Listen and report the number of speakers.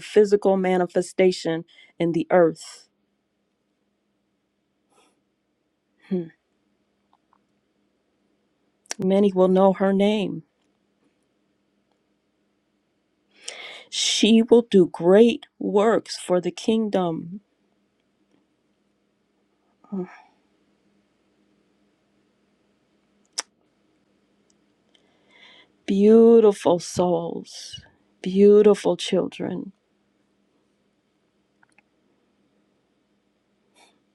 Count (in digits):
1